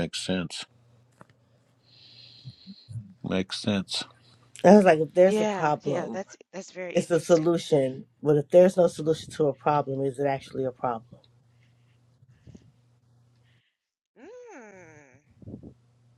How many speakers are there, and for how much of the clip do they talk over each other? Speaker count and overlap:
3, about 9%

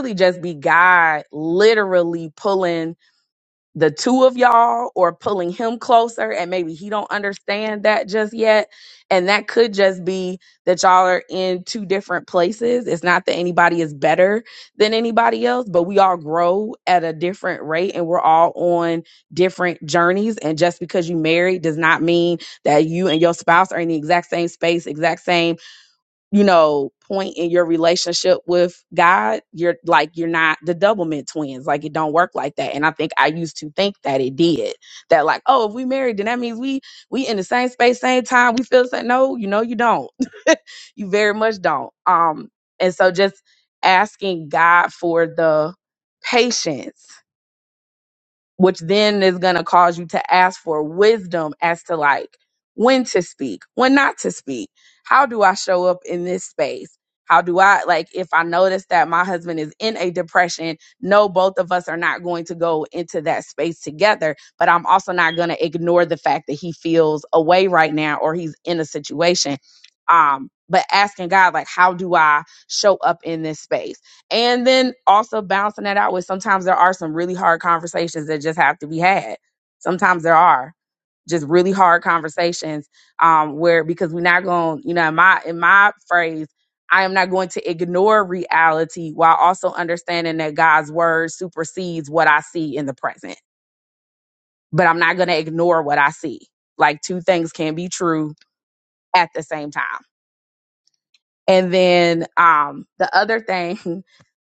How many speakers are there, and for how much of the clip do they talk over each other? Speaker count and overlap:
1, no overlap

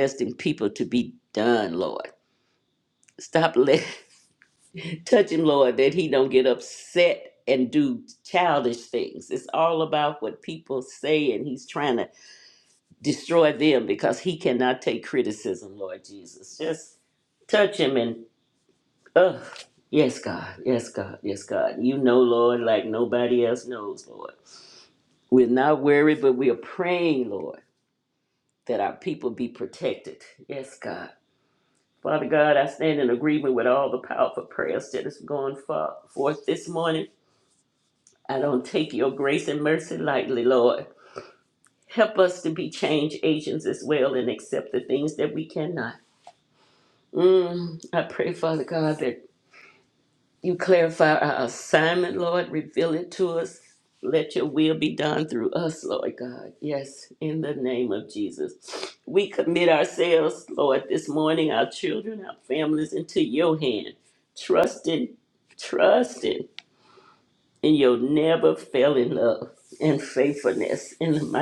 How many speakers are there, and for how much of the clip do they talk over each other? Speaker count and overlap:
1, no overlap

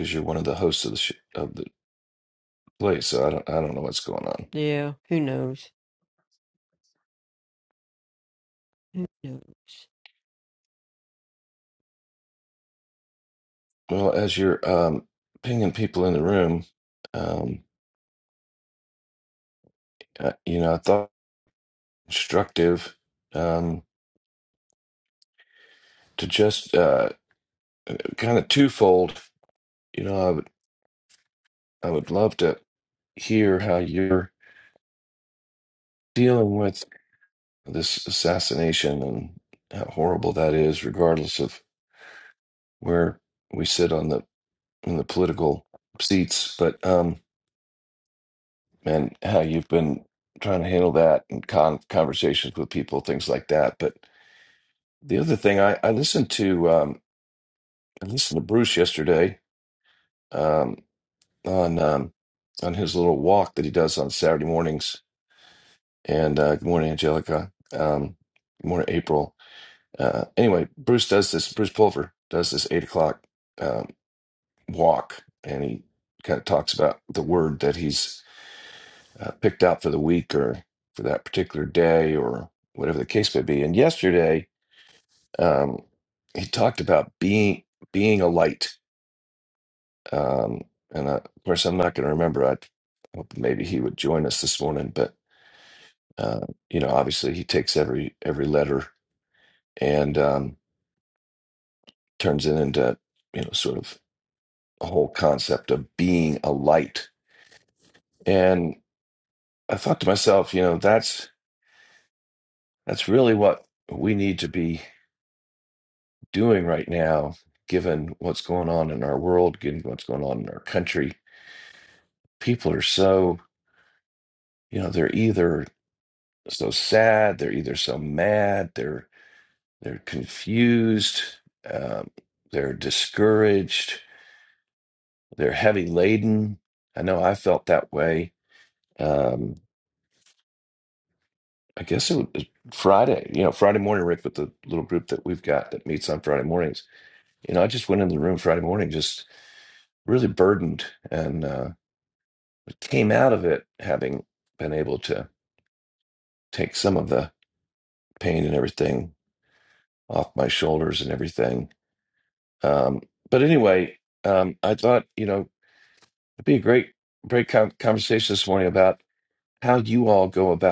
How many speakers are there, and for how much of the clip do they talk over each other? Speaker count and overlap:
2, no overlap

